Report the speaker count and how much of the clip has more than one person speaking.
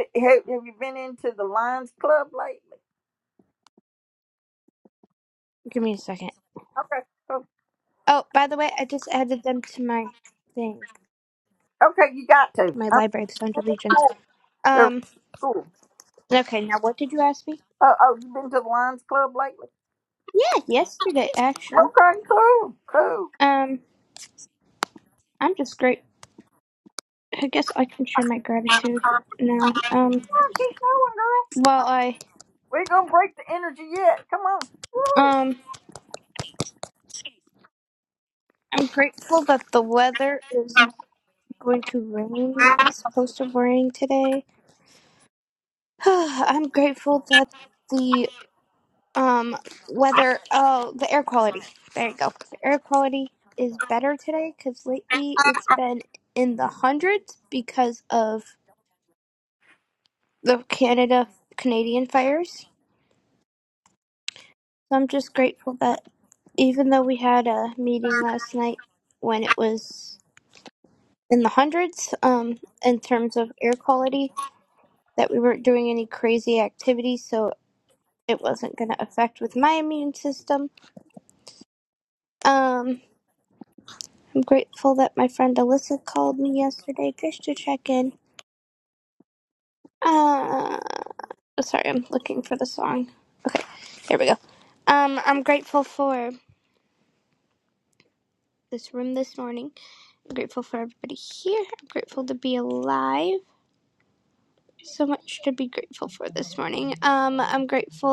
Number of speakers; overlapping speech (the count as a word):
two, about 1%